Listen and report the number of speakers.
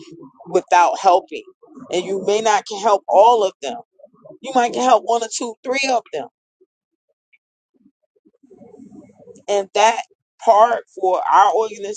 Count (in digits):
1